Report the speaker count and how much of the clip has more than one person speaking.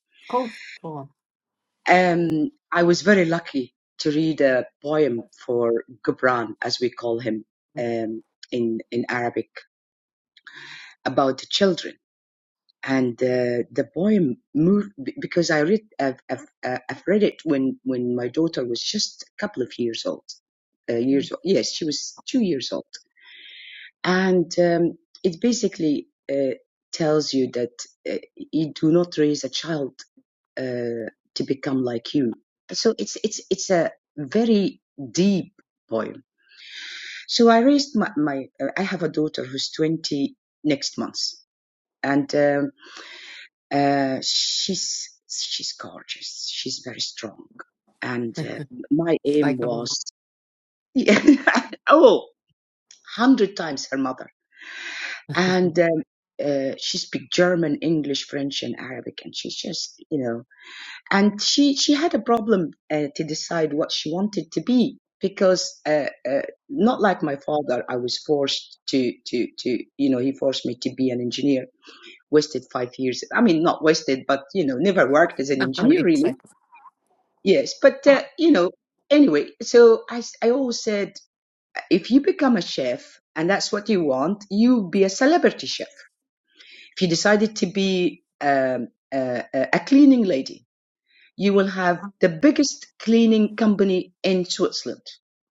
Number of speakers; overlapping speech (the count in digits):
2, about 1%